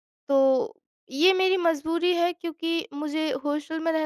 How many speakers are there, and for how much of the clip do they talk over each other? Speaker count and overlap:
1, no overlap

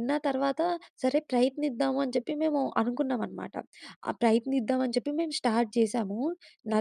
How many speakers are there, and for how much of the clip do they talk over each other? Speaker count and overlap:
1, no overlap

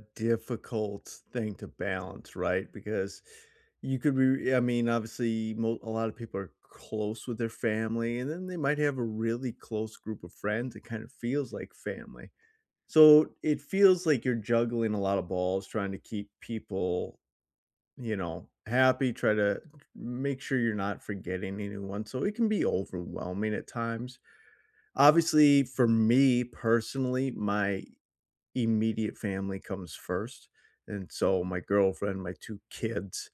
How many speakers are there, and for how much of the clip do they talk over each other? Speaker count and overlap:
1, no overlap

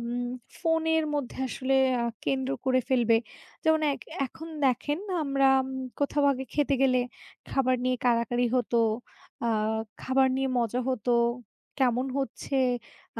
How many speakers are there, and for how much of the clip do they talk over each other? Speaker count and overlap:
1, no overlap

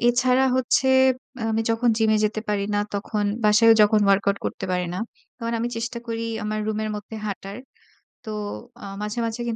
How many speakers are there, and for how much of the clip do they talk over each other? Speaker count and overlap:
1, no overlap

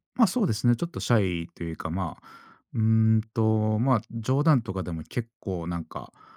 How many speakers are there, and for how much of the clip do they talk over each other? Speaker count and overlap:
1, no overlap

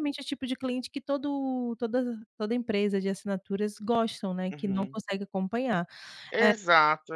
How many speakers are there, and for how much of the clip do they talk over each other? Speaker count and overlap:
2, about 8%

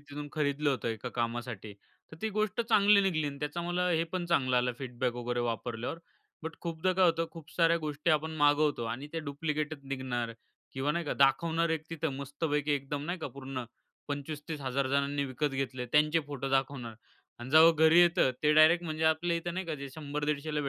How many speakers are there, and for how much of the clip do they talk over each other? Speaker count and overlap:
1, no overlap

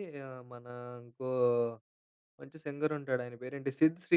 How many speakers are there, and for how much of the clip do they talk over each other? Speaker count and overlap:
1, no overlap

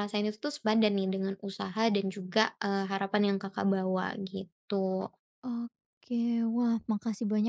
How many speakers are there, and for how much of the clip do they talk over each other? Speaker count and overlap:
2, no overlap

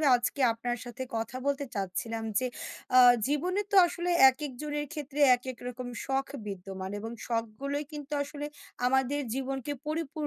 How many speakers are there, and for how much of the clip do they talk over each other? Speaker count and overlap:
1, no overlap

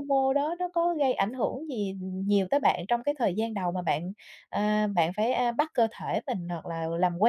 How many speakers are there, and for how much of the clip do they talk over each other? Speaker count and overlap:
1, no overlap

